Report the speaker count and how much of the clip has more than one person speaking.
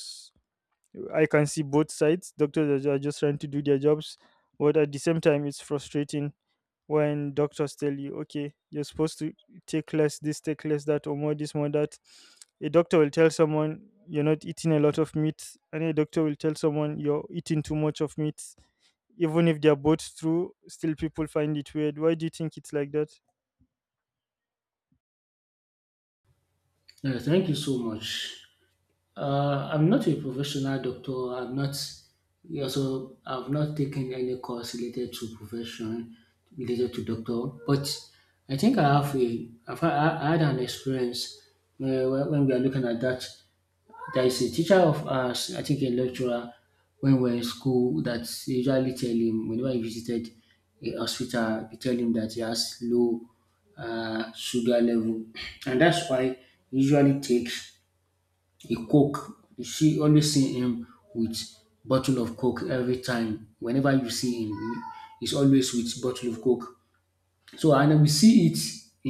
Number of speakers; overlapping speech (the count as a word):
two, no overlap